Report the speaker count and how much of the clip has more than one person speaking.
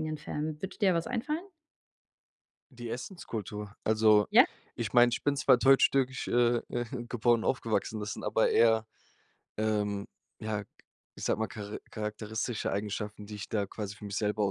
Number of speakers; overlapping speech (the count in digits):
2, no overlap